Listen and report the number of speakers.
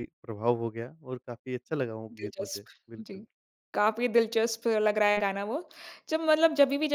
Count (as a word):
two